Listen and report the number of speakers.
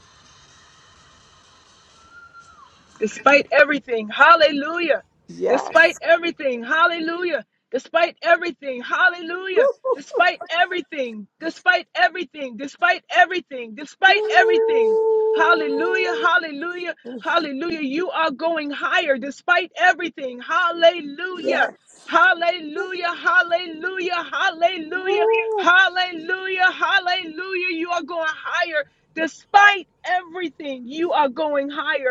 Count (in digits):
2